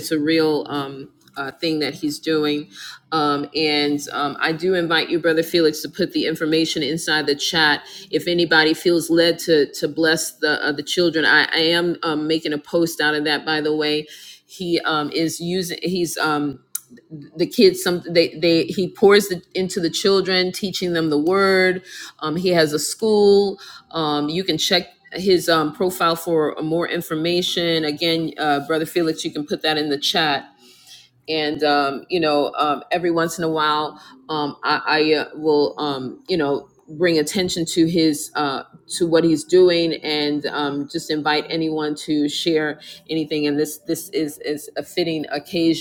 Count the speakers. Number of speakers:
1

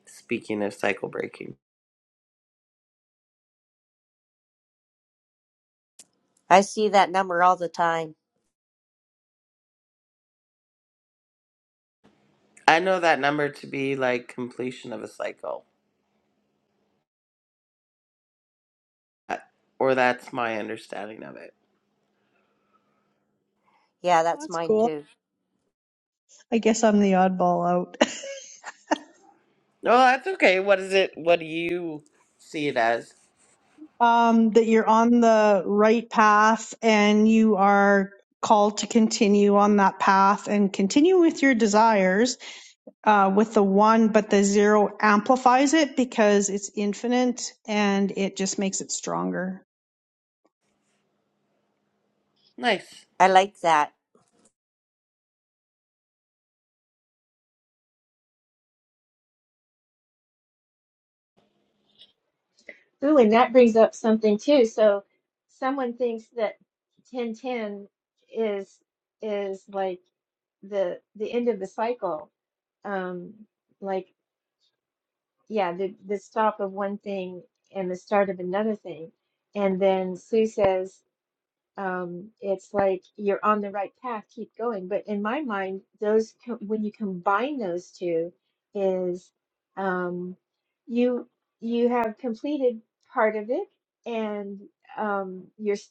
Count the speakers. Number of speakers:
4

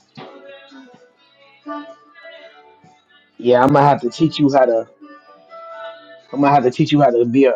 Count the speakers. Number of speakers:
1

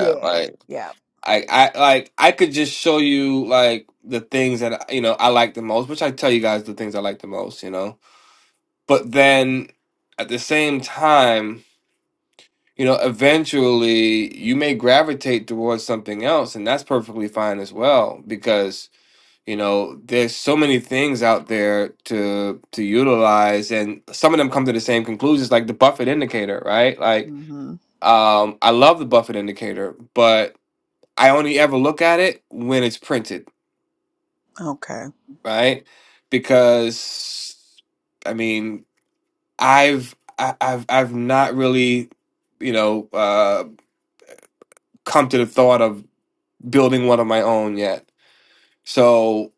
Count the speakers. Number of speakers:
2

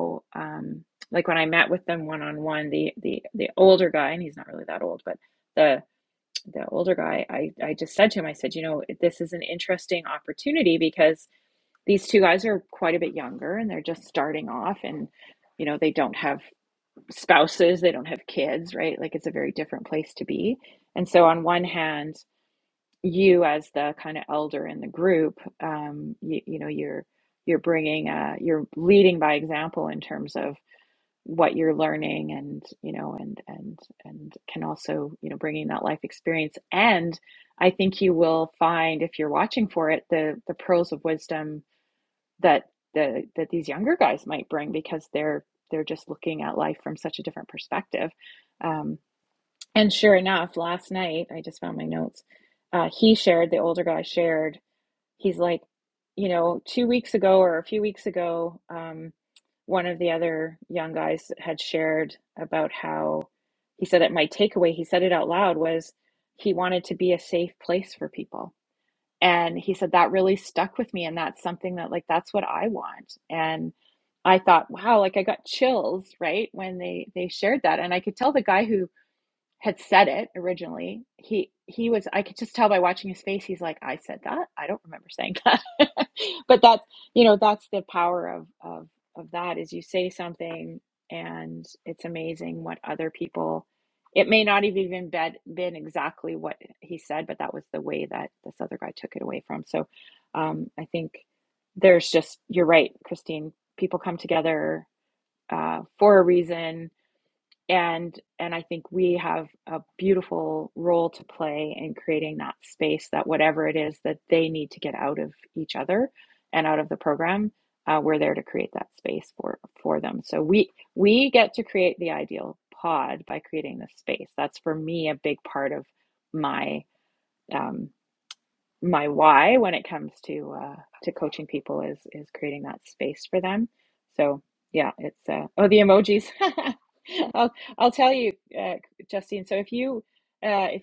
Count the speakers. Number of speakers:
1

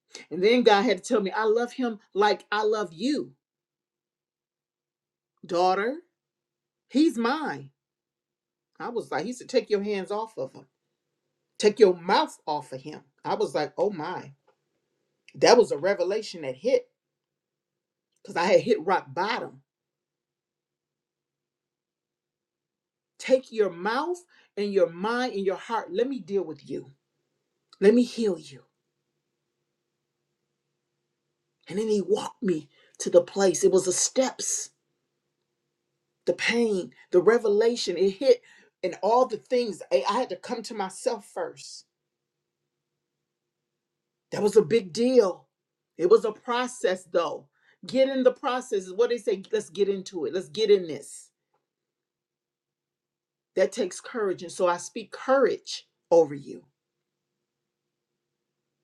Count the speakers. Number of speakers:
1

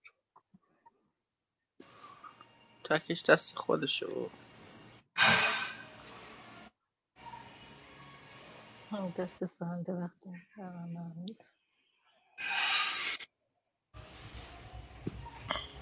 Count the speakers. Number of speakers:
2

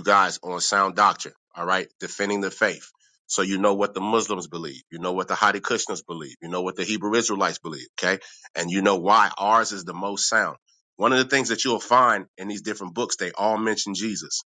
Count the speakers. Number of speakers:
1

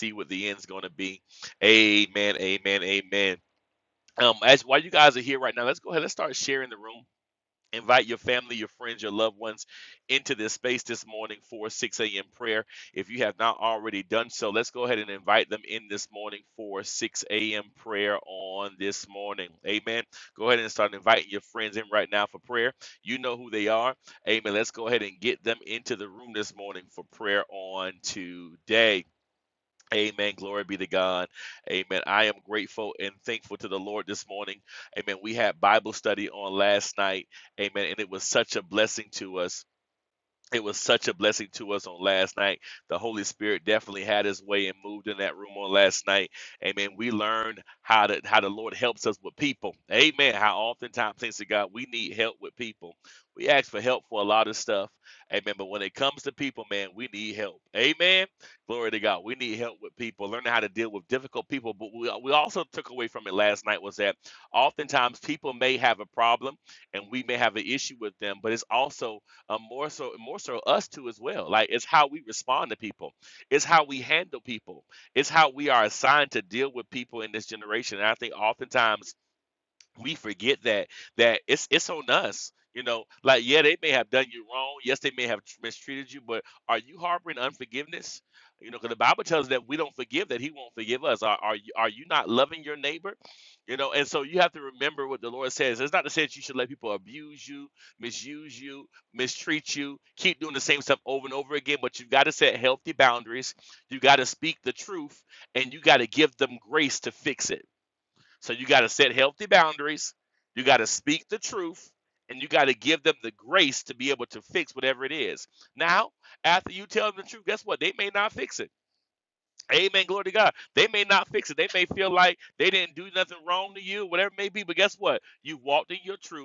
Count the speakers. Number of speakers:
1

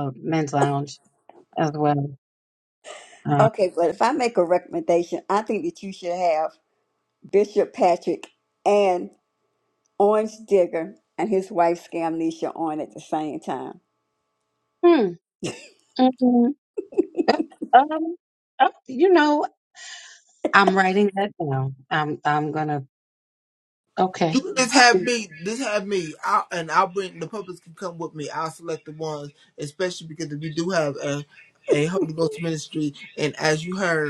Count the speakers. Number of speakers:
3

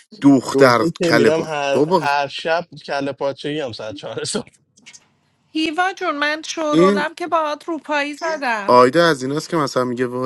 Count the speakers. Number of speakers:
3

